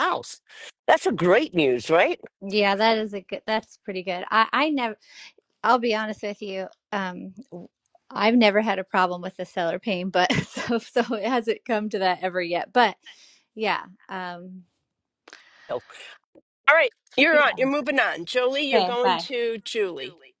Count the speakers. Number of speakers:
3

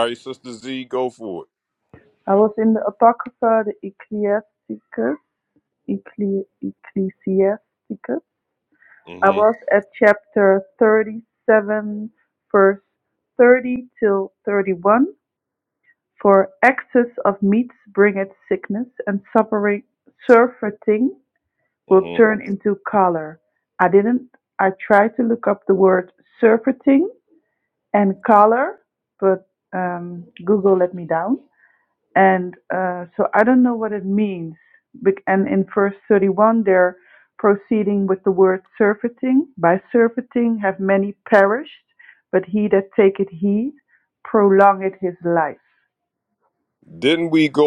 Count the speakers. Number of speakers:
2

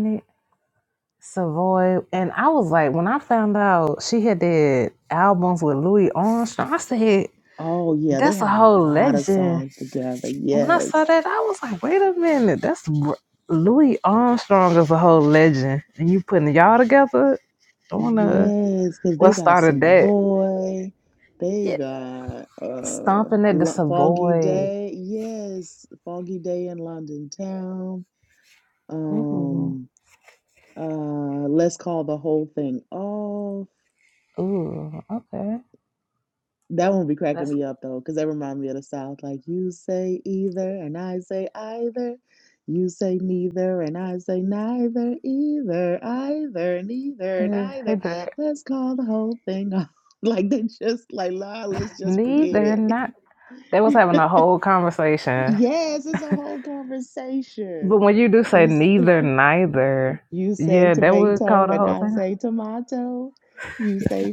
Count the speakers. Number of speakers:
2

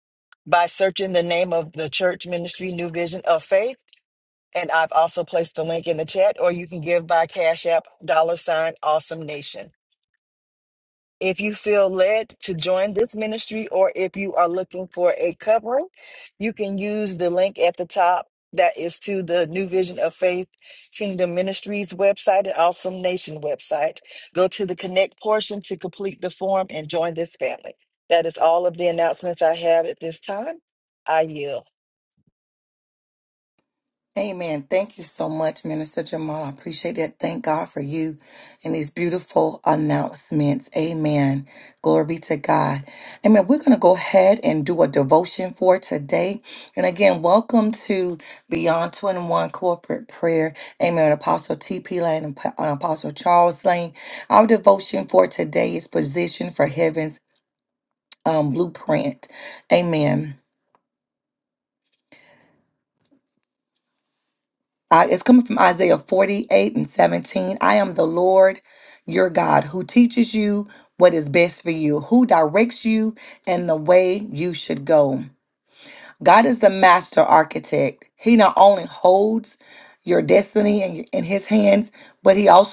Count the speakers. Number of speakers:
2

